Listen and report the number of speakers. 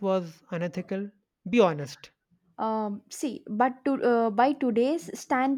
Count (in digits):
2